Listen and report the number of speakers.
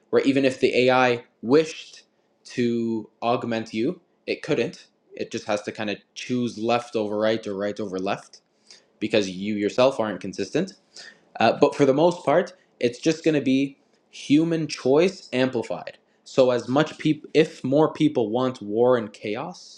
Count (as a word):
one